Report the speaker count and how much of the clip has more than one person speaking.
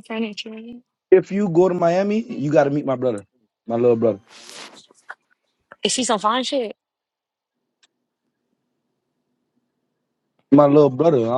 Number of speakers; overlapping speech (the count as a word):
two, no overlap